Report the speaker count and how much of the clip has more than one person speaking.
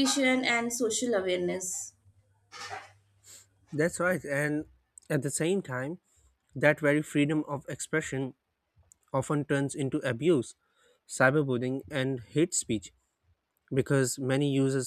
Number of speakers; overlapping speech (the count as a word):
two, no overlap